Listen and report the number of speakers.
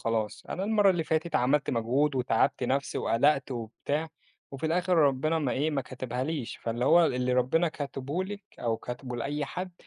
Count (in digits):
1